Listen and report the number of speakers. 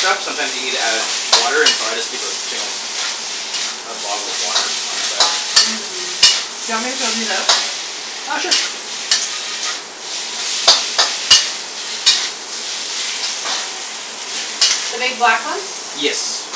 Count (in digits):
2